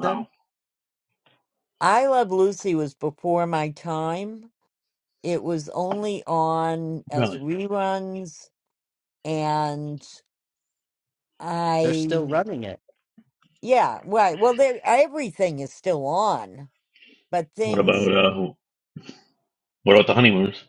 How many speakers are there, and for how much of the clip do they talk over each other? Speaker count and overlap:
three, about 5%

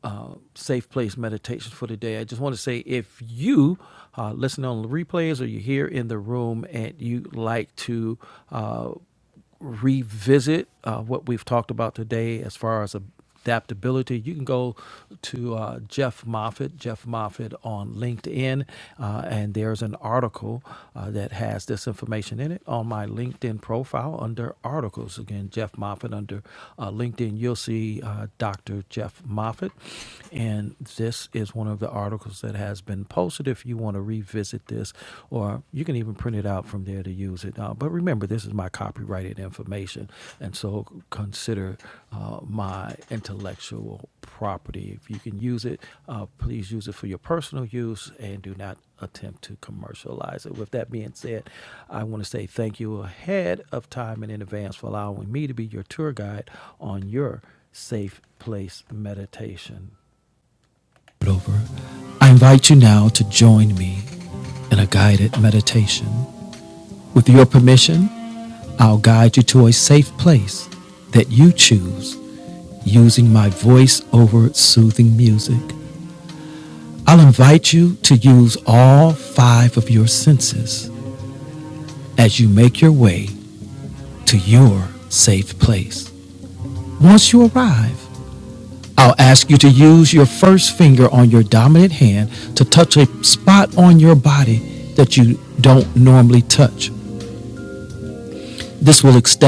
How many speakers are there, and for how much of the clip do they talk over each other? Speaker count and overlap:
one, no overlap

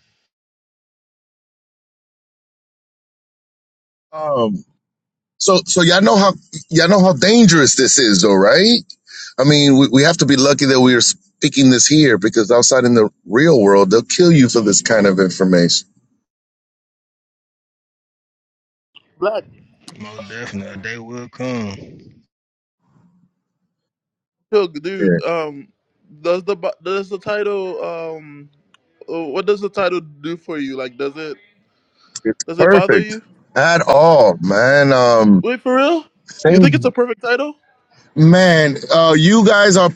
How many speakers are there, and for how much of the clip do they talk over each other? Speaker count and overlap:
three, about 3%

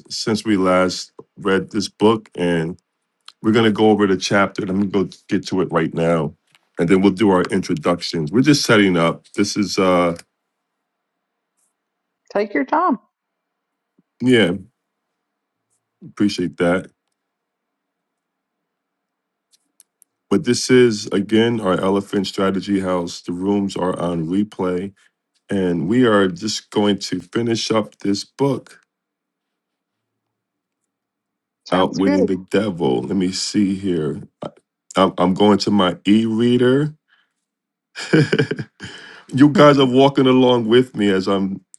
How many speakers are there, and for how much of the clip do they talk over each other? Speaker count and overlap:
two, about 2%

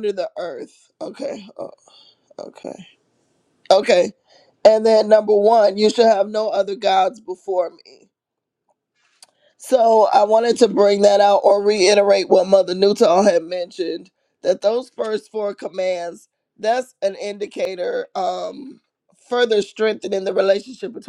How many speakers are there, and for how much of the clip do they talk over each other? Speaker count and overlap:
one, no overlap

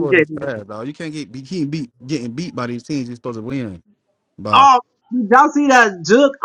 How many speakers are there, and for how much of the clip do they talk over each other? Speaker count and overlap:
two, about 7%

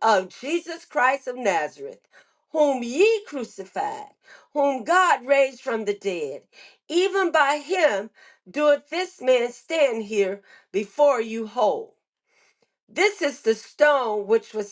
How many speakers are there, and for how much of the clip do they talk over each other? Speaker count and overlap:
one, no overlap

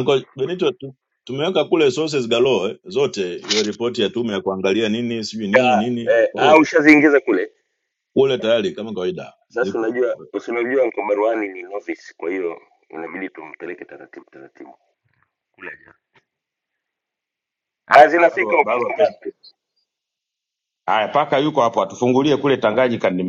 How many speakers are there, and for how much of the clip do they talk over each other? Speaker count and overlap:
three, about 10%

